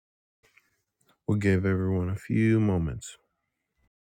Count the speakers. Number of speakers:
1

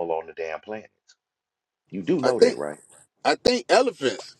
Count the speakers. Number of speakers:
2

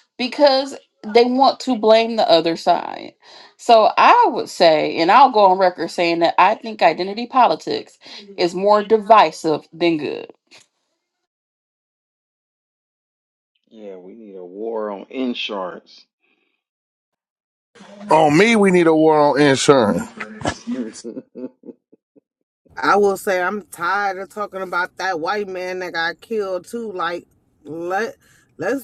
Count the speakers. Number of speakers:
4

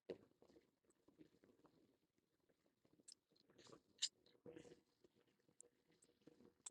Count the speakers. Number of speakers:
0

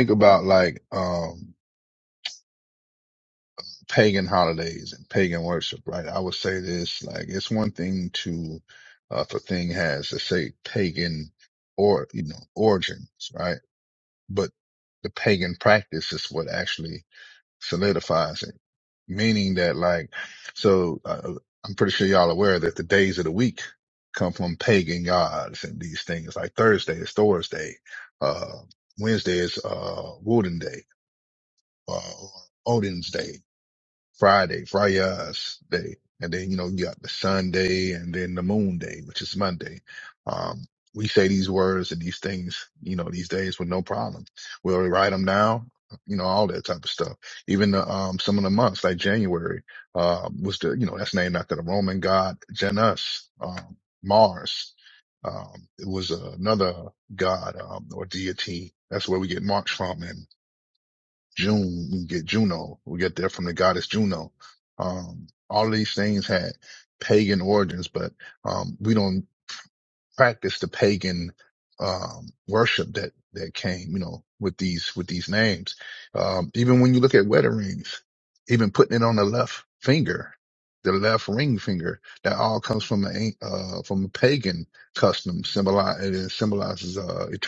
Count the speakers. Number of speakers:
1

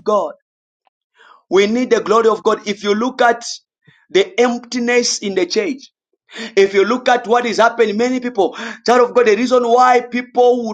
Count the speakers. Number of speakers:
1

